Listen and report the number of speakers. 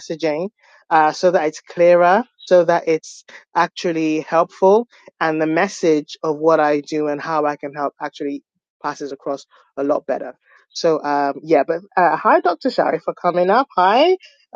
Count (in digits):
1